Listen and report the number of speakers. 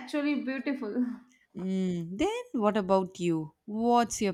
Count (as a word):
two